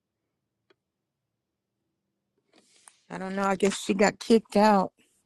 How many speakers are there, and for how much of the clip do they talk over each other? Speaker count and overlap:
one, no overlap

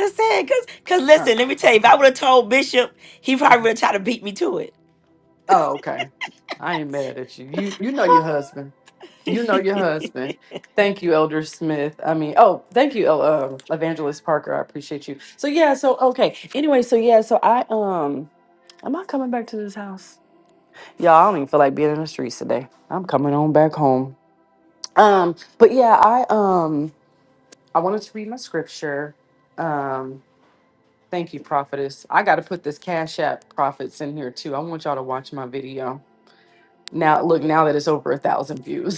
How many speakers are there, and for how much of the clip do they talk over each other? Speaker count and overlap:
two, about 1%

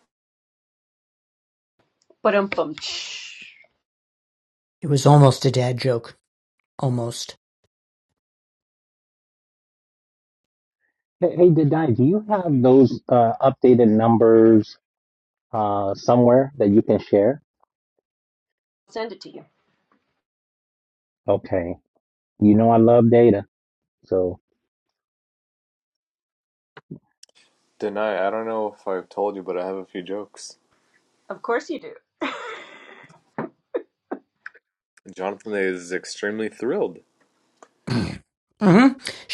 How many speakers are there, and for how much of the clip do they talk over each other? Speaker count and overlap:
four, no overlap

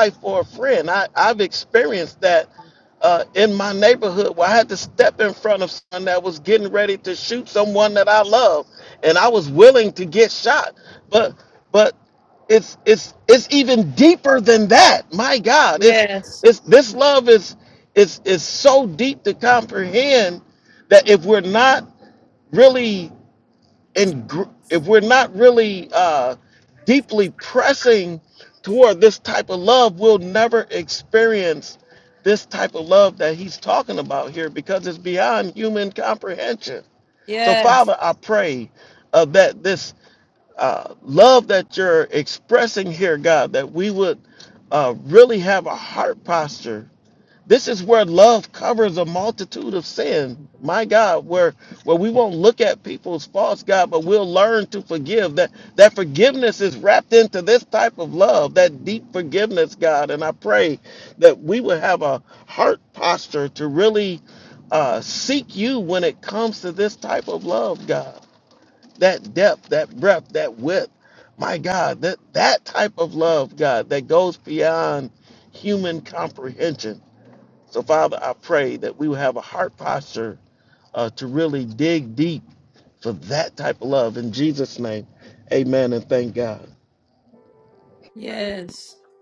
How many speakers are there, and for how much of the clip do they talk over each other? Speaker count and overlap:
two, about 1%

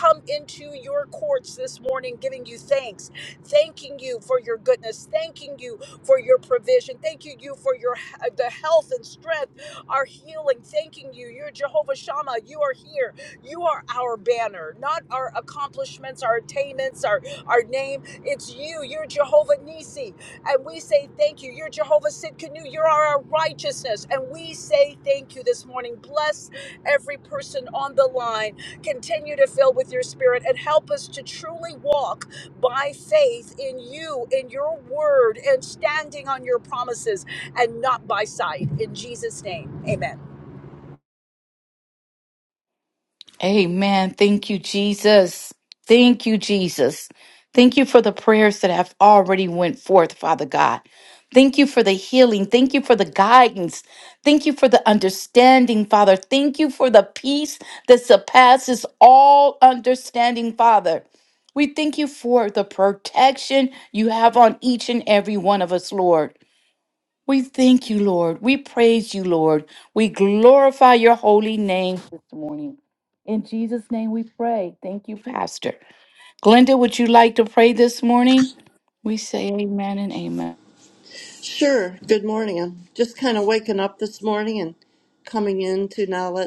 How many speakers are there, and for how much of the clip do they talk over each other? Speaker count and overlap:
three, no overlap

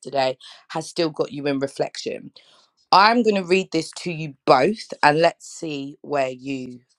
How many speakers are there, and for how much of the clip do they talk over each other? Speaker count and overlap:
one, no overlap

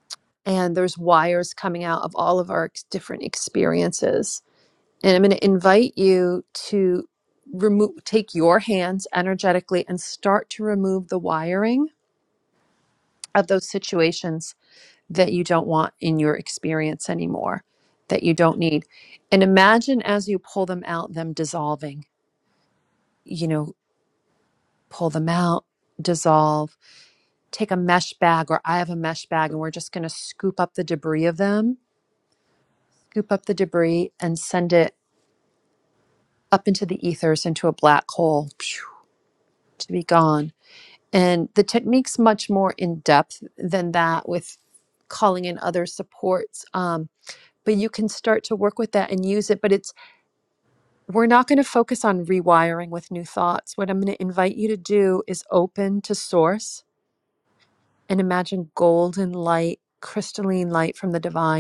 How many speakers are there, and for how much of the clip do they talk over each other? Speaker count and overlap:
one, no overlap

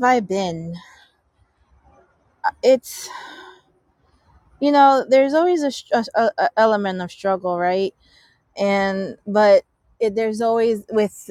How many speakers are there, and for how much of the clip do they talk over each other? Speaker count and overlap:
one, no overlap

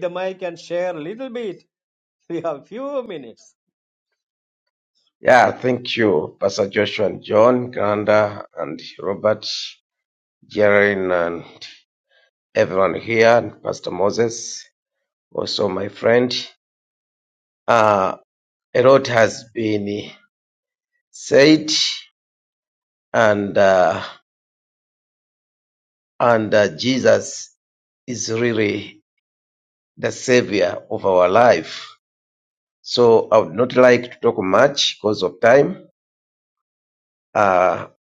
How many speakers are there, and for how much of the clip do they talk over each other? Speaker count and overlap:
two, no overlap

